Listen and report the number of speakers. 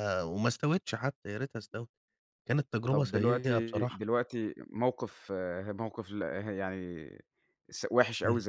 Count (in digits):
2